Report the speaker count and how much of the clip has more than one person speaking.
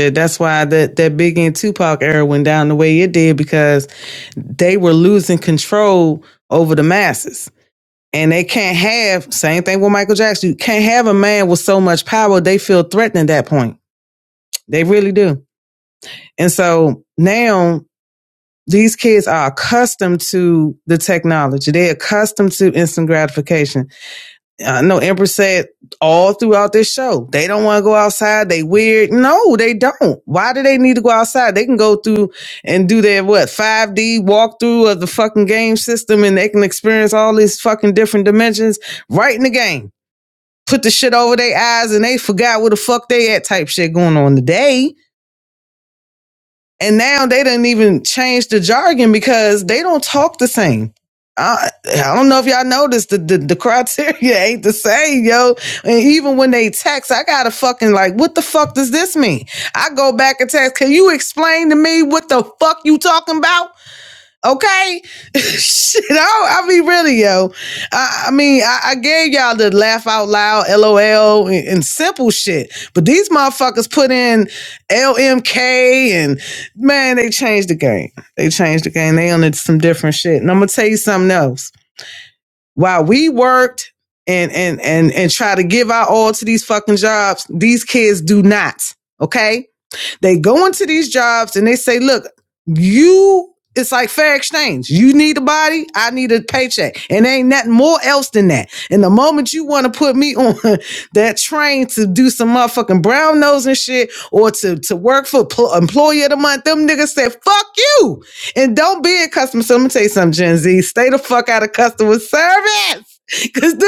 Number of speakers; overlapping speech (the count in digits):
1, no overlap